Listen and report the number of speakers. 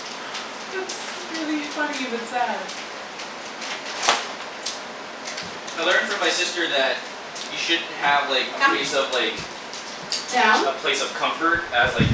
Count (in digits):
2